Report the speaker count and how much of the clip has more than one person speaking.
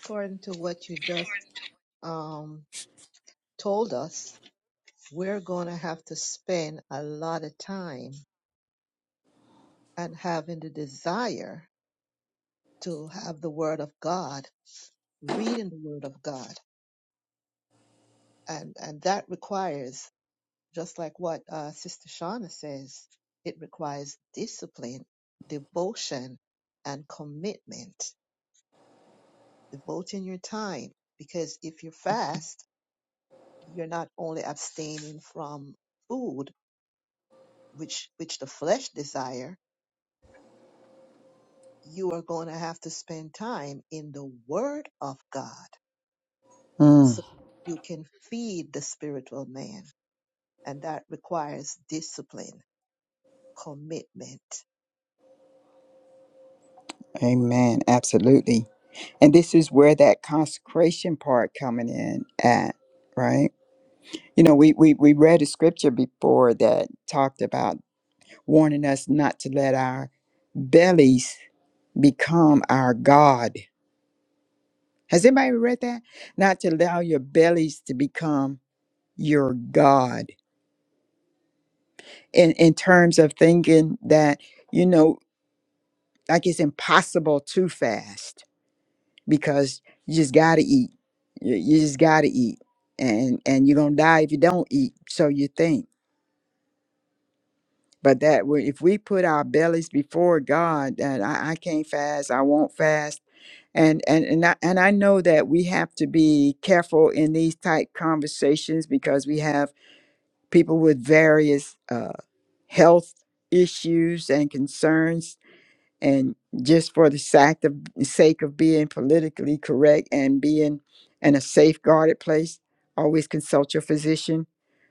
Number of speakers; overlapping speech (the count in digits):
2, under 1%